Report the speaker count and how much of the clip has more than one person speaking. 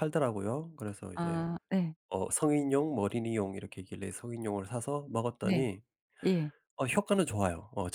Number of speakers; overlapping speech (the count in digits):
2, about 6%